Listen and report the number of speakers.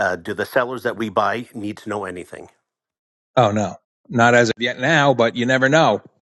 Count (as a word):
two